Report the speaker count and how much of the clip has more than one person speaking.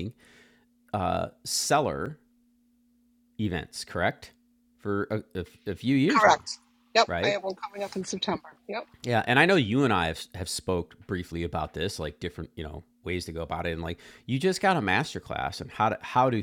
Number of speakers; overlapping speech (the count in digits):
2, about 4%